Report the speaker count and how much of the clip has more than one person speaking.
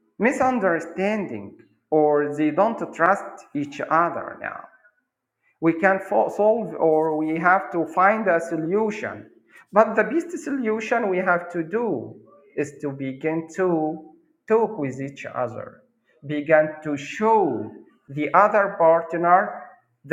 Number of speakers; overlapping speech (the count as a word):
one, no overlap